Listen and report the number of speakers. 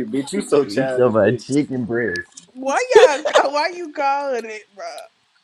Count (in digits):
3